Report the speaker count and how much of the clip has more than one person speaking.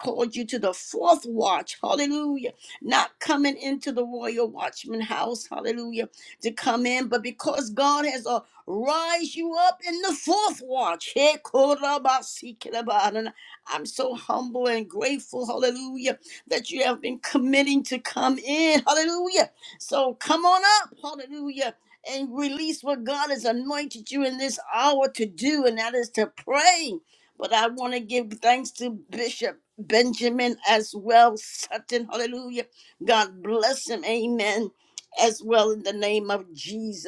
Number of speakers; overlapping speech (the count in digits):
1, no overlap